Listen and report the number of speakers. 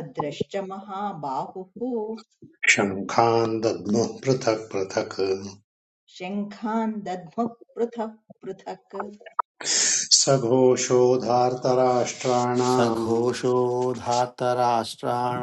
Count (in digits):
3